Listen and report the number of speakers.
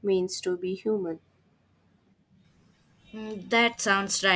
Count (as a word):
two